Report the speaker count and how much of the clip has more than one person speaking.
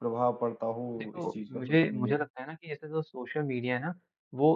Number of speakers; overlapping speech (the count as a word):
two, about 27%